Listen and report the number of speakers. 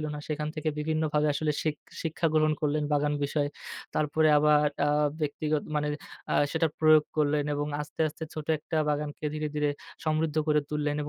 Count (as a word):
one